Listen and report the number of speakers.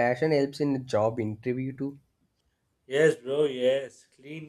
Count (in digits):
2